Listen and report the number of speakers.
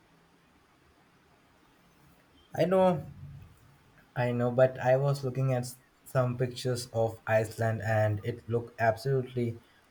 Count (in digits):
1